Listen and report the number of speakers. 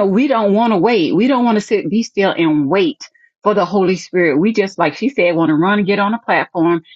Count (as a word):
one